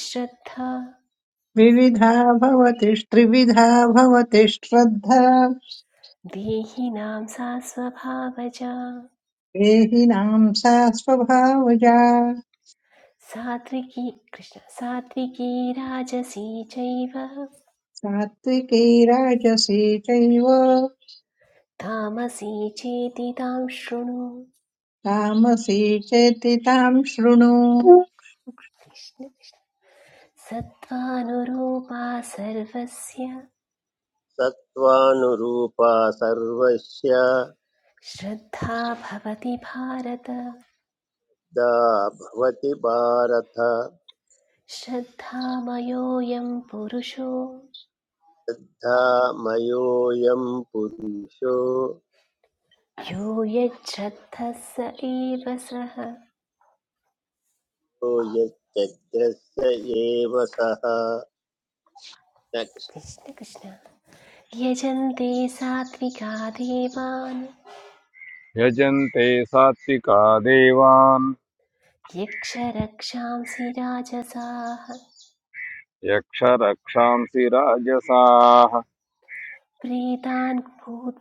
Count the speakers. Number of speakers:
4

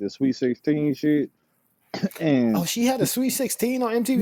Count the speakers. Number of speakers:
2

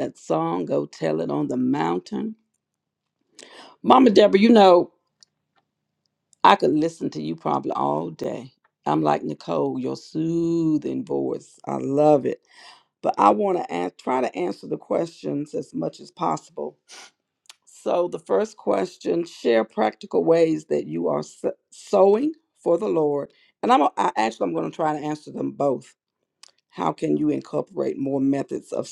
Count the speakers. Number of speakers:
1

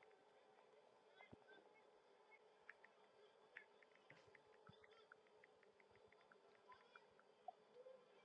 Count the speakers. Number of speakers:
0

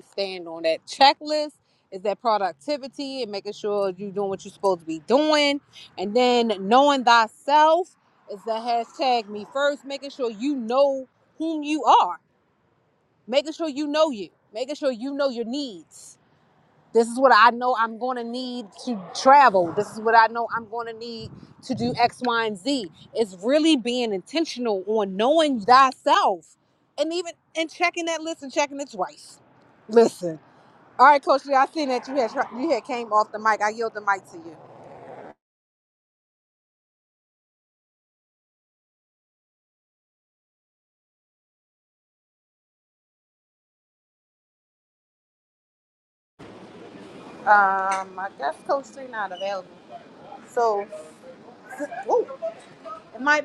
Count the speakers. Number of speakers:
1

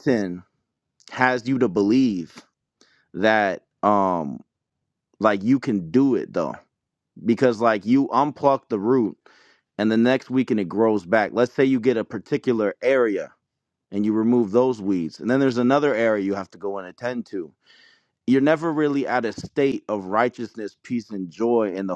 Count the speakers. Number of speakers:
1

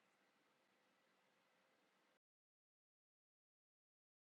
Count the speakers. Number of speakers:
0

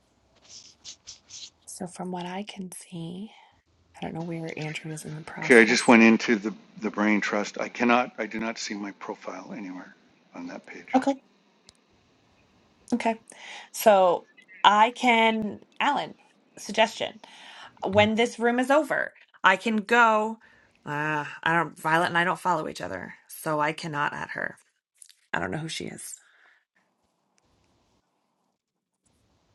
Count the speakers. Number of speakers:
2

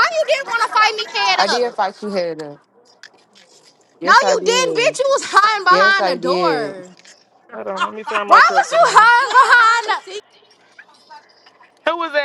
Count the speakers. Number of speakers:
3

